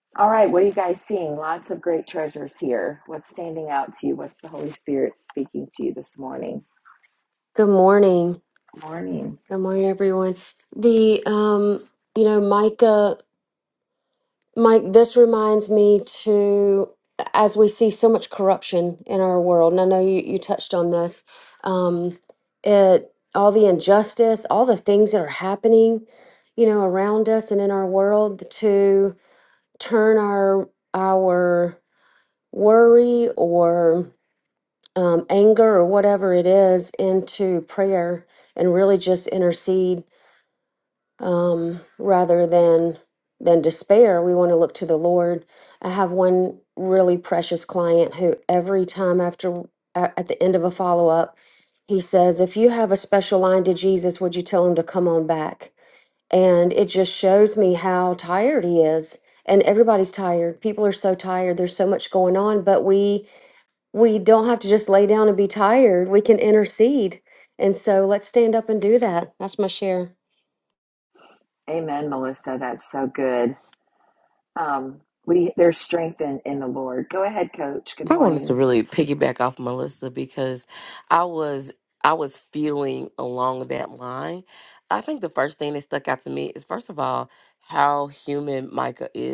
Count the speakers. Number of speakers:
3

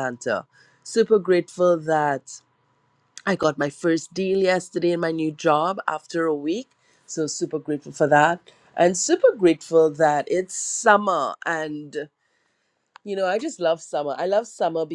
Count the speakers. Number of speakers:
1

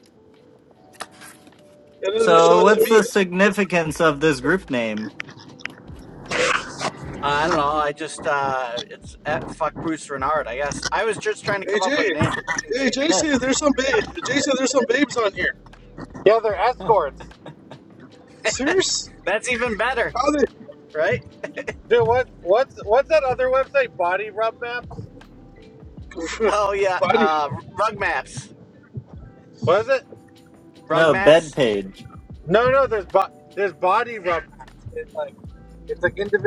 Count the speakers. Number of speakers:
4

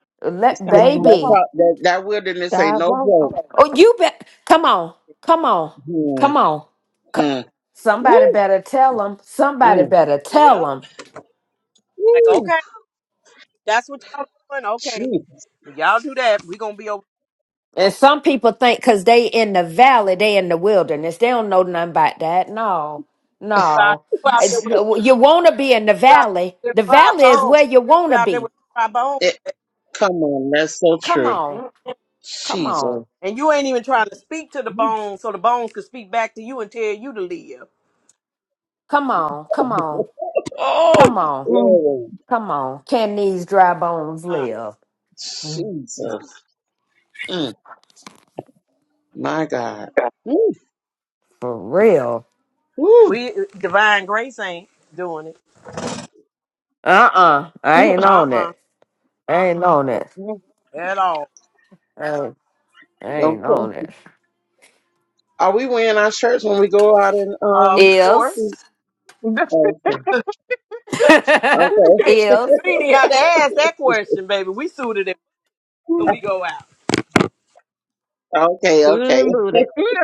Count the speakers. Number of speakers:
4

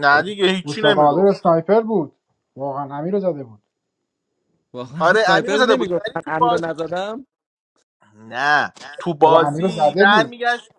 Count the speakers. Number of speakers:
3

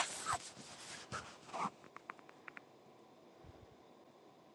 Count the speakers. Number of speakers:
0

